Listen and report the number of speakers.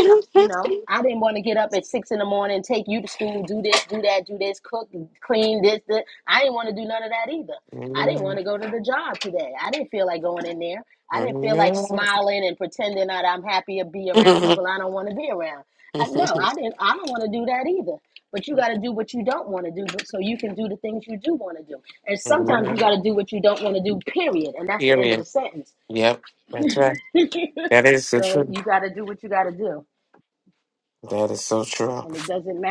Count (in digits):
2